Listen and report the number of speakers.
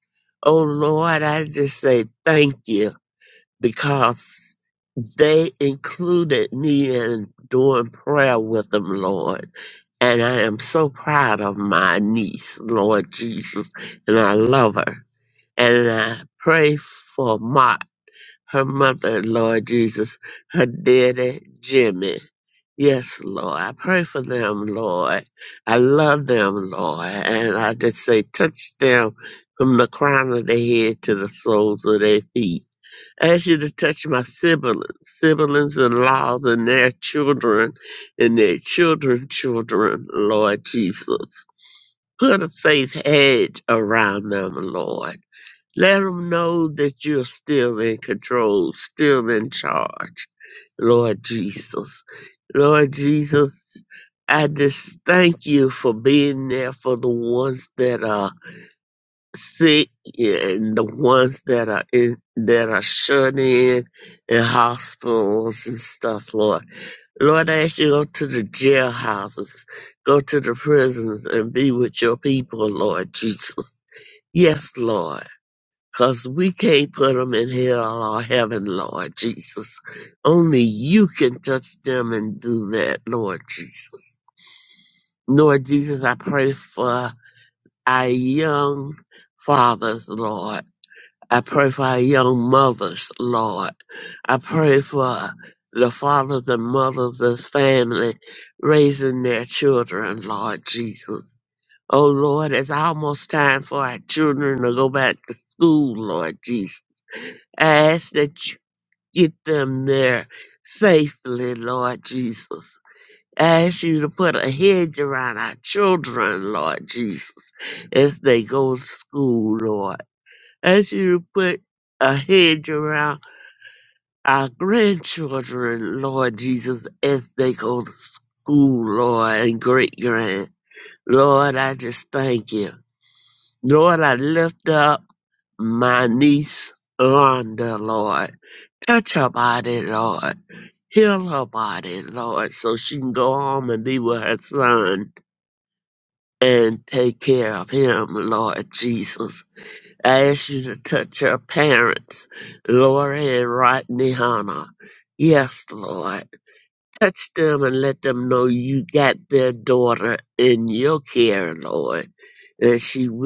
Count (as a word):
one